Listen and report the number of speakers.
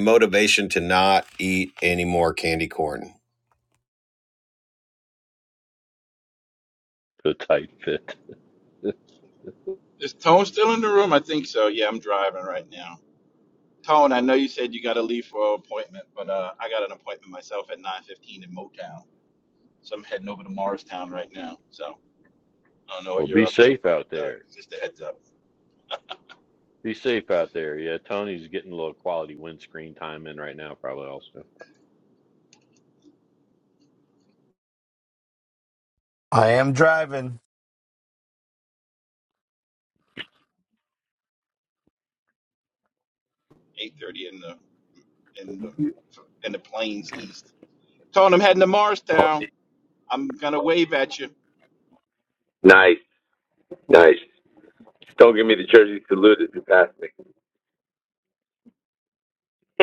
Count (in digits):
4